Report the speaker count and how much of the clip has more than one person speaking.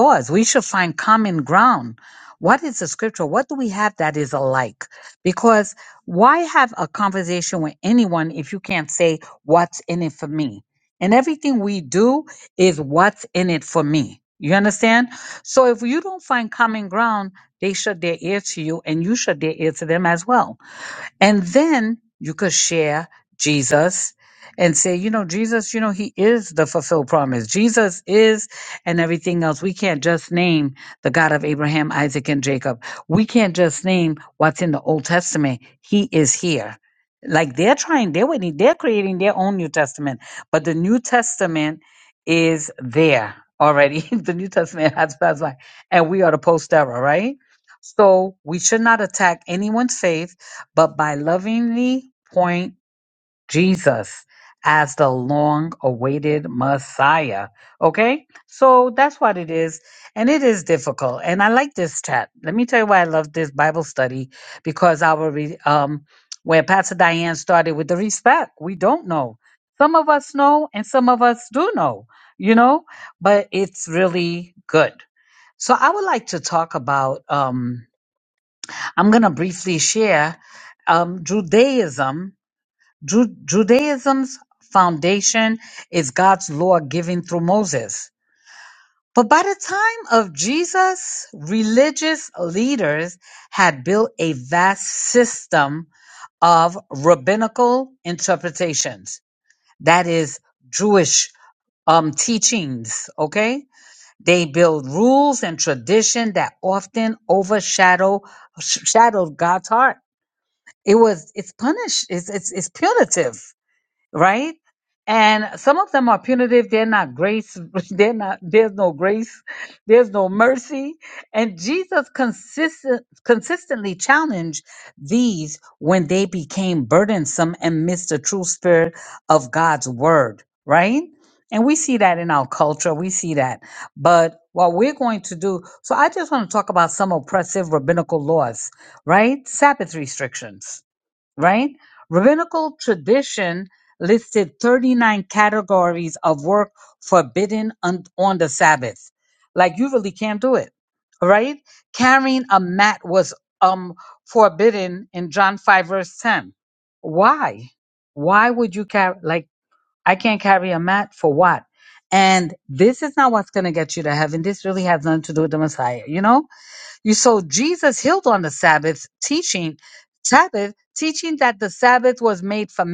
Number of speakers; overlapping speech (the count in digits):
1, no overlap